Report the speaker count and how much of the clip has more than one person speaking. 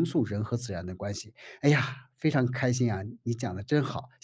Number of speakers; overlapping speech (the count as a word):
one, no overlap